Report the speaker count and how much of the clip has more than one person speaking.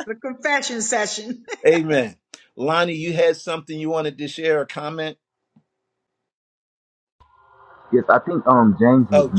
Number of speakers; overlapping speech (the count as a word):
three, about 3%